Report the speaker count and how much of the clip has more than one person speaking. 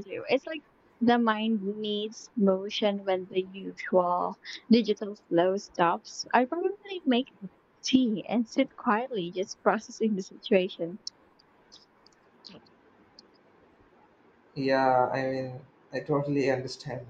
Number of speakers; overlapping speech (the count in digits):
2, no overlap